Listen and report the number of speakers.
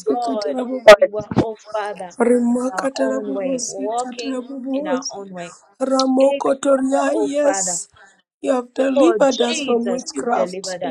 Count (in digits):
2